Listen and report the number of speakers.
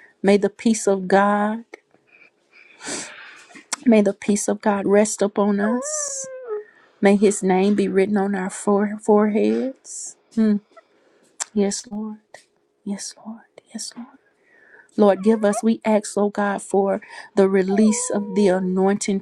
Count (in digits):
1